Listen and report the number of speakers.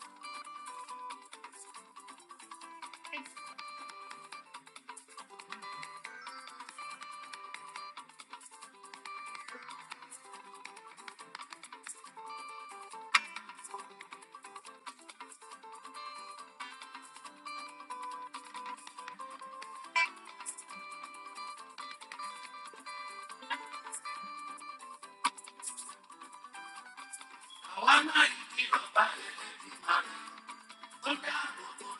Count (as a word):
zero